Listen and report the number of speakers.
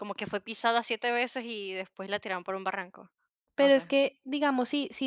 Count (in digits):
2